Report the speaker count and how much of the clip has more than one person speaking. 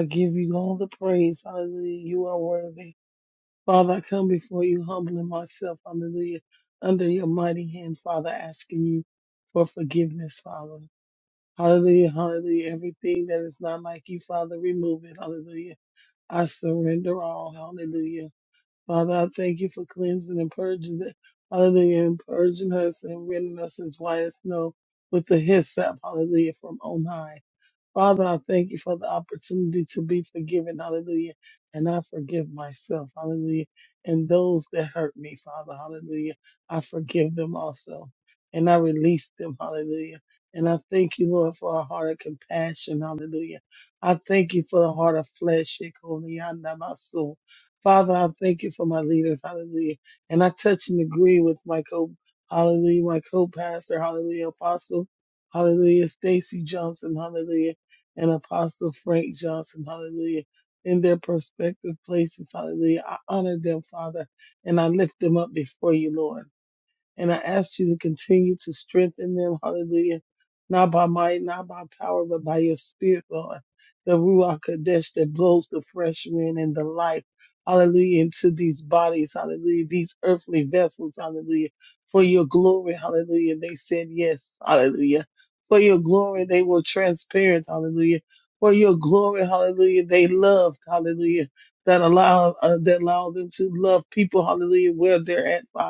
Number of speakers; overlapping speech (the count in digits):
1, no overlap